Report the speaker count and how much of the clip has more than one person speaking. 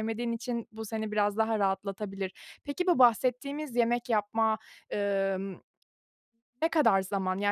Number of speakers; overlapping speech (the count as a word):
one, no overlap